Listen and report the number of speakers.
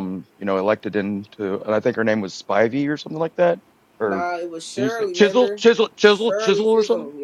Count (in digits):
2